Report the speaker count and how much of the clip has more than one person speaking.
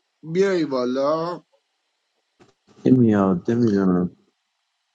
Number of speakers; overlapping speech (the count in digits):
2, no overlap